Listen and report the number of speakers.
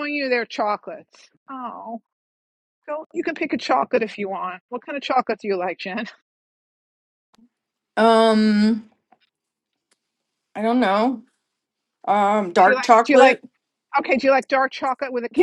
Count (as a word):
two